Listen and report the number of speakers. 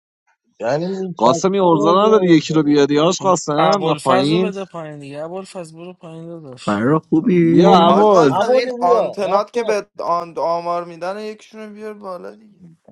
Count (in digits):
5